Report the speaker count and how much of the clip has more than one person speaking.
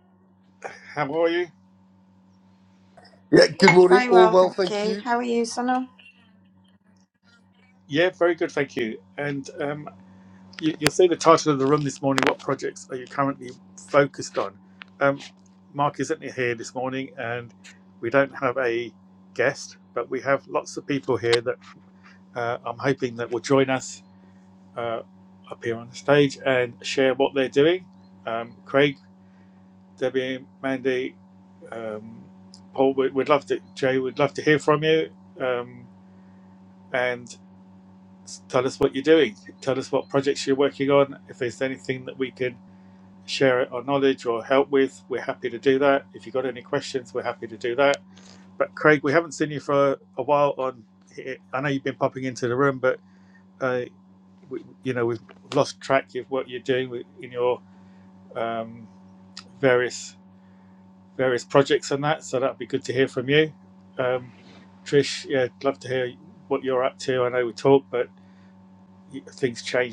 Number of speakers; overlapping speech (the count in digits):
3, about 2%